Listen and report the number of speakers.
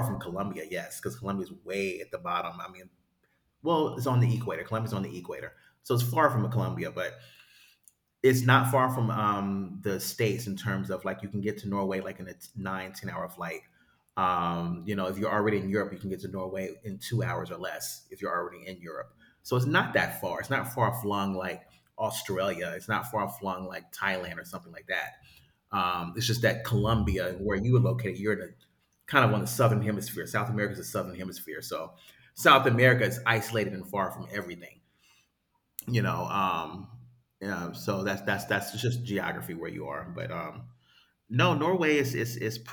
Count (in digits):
1